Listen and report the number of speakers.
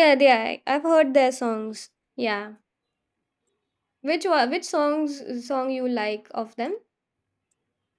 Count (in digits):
1